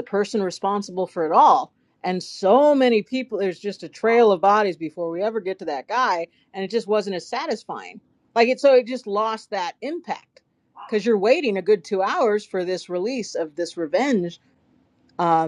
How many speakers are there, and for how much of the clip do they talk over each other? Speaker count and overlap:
1, no overlap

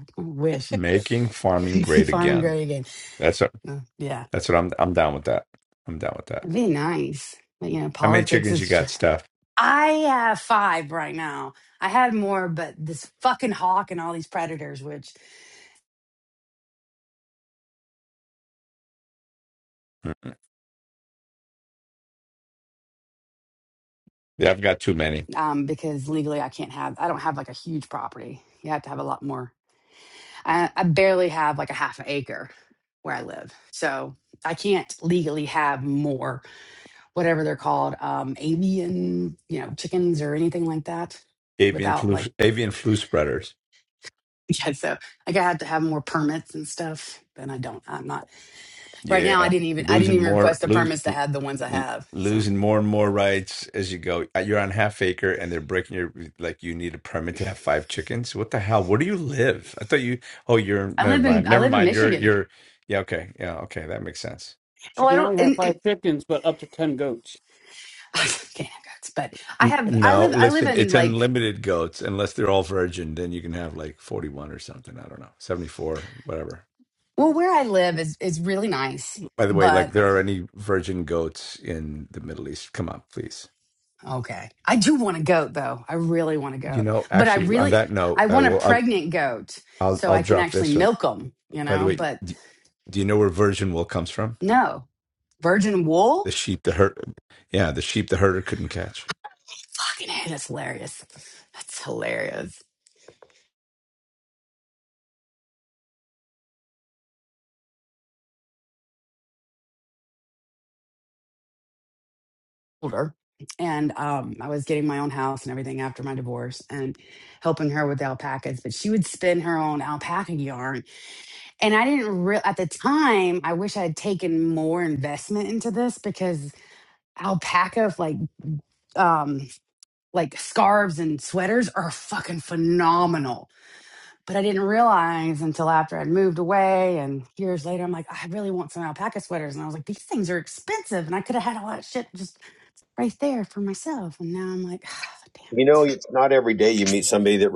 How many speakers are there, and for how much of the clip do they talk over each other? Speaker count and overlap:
4, about 8%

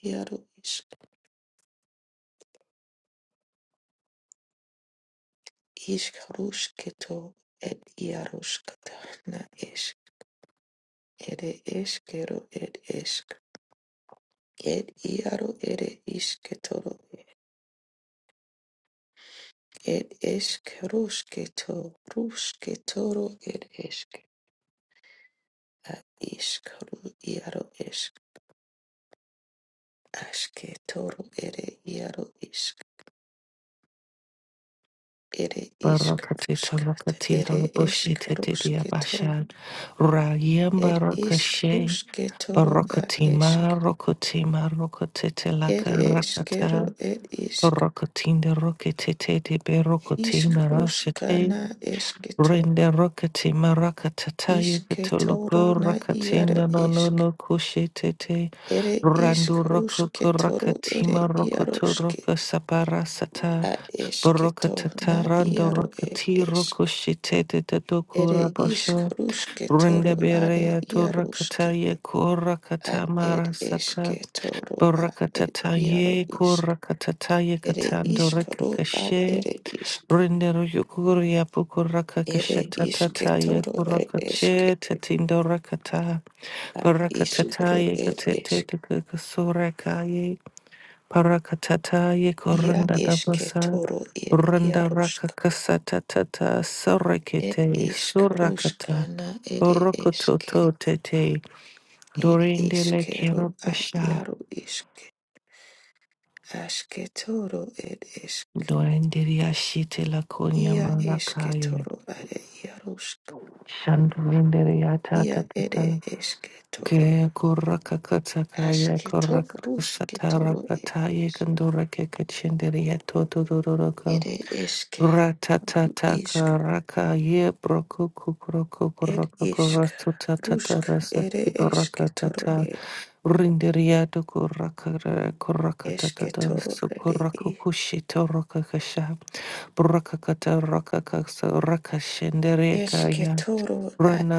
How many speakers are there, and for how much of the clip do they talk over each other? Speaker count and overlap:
2, about 30%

